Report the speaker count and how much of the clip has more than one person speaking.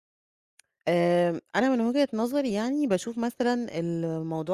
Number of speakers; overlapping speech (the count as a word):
one, no overlap